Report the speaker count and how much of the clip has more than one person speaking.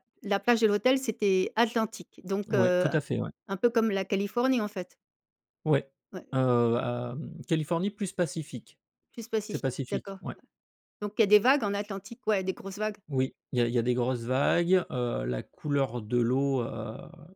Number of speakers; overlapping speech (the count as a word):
two, about 5%